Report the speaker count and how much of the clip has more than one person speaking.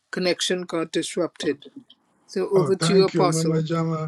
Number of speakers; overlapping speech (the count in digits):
2, about 27%